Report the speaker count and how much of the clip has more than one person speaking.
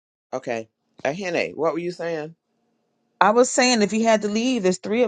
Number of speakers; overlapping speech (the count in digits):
2, no overlap